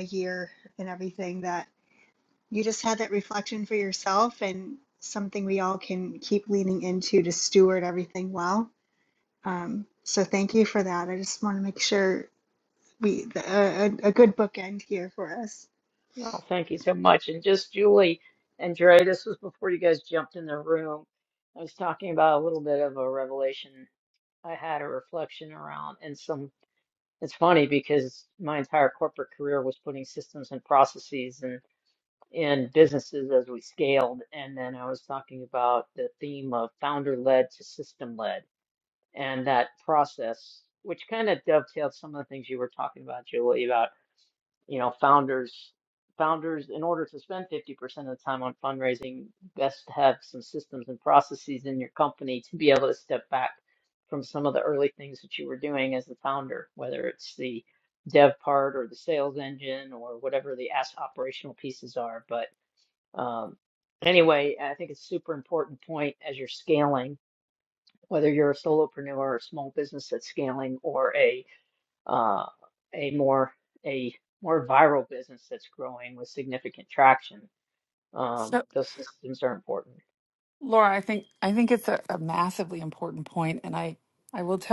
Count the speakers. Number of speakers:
3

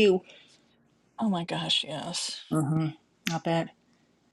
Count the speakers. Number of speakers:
2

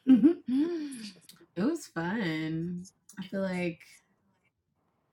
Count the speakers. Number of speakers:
1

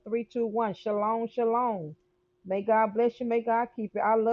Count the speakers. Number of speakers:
1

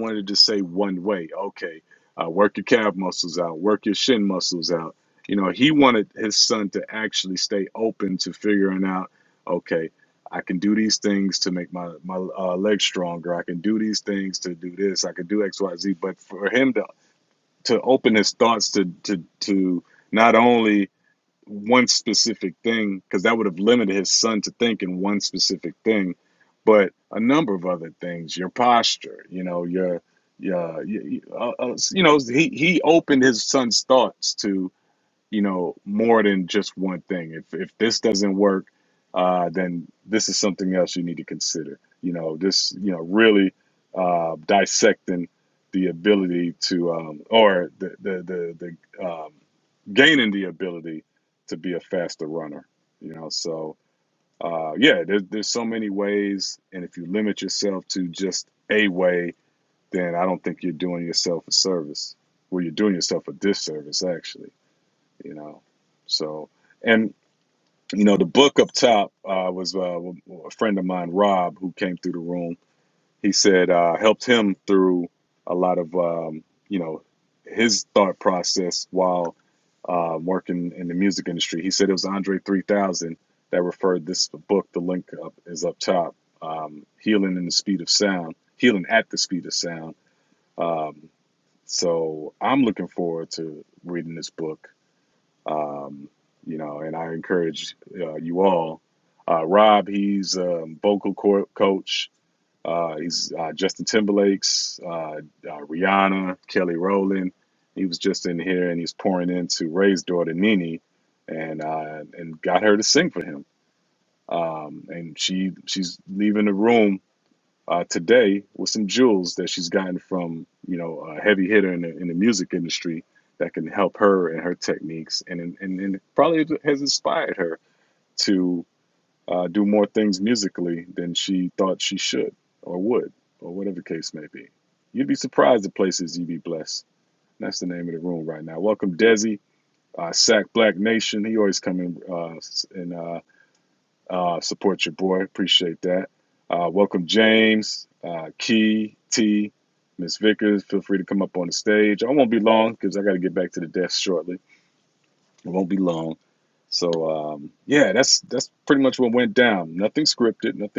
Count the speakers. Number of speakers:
1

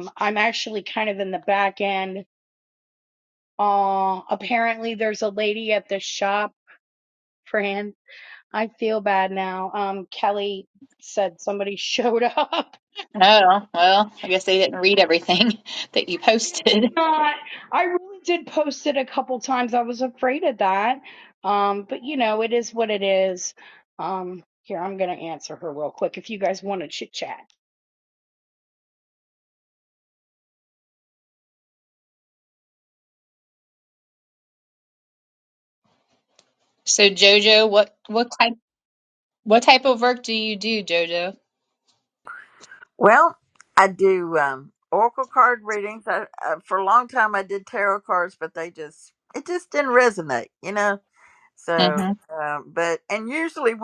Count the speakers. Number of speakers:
3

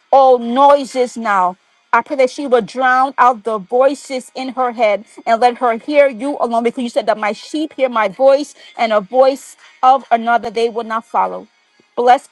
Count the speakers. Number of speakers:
1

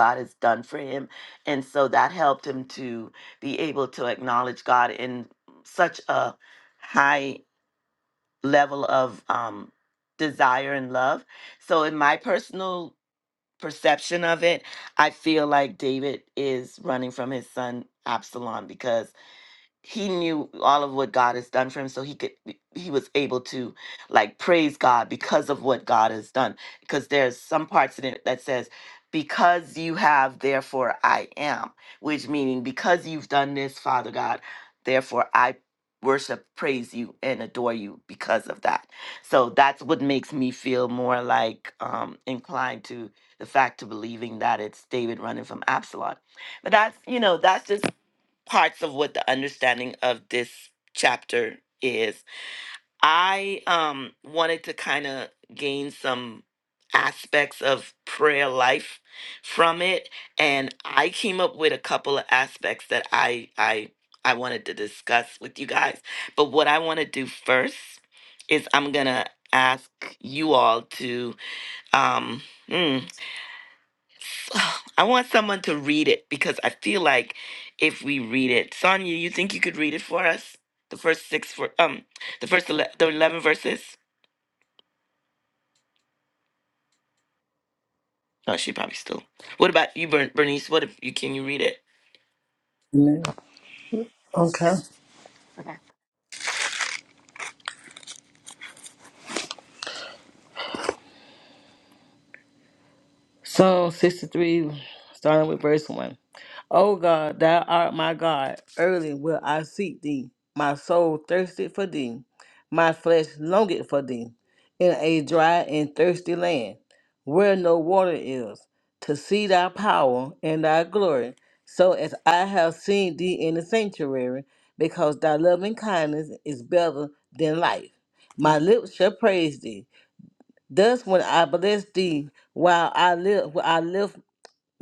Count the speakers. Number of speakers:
2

